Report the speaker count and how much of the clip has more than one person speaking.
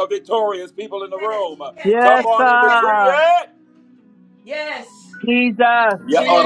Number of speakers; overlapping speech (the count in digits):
3, about 32%